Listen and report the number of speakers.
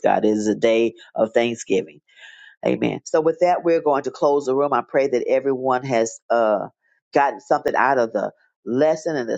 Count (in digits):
1